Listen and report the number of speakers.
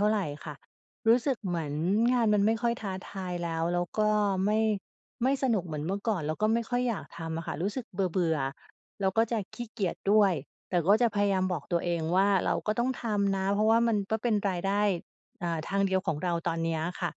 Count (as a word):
one